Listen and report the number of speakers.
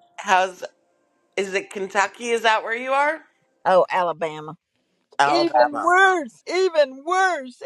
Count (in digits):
2